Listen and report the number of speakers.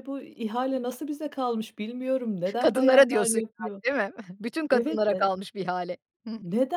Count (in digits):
2